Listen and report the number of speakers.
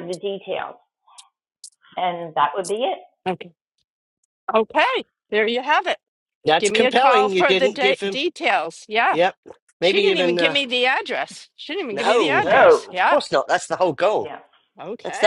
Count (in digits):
3